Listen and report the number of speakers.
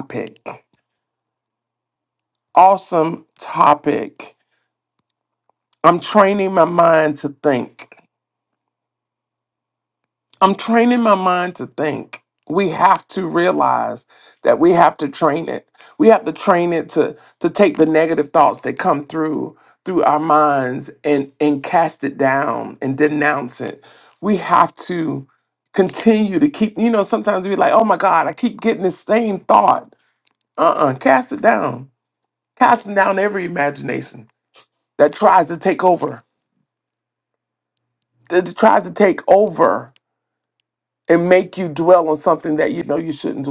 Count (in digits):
1